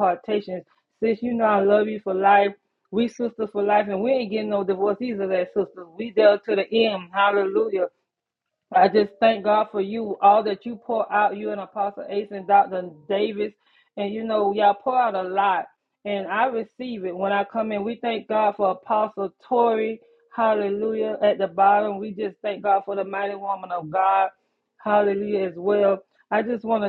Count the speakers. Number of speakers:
1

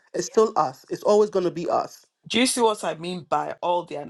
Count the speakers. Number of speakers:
2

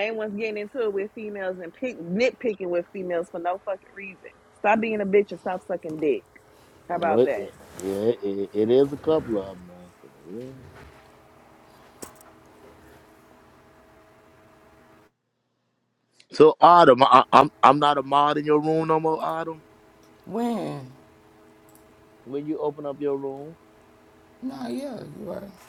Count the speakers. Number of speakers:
3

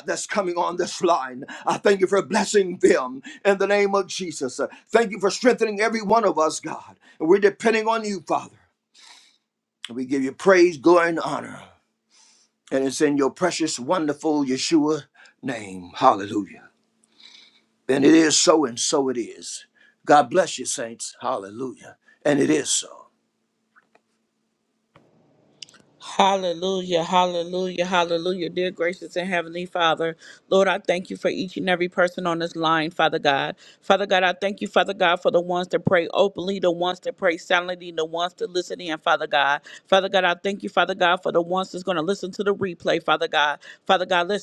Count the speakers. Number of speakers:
2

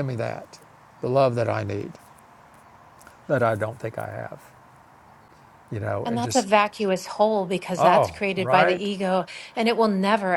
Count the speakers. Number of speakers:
2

